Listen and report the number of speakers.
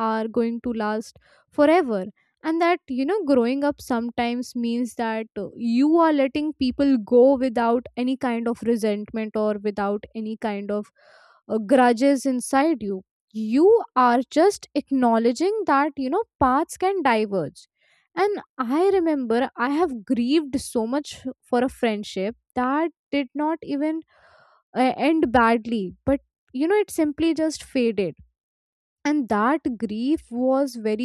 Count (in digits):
1